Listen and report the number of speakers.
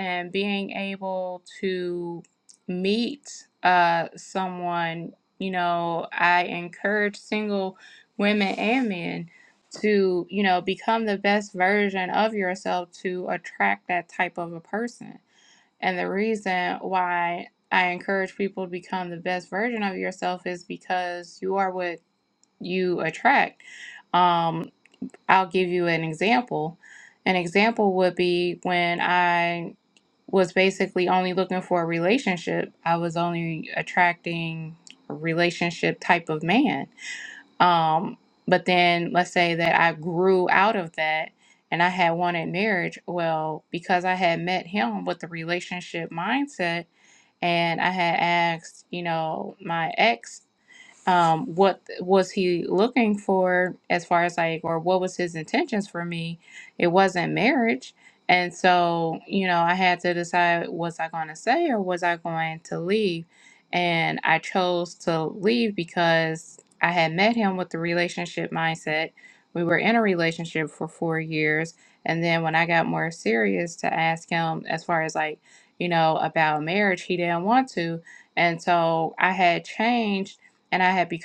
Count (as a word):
one